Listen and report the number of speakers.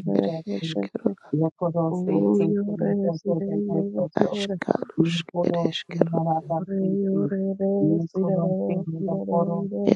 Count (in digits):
3